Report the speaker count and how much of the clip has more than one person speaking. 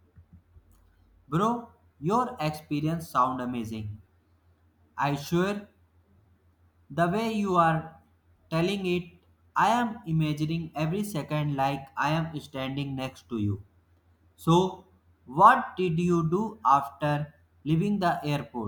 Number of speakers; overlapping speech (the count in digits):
1, no overlap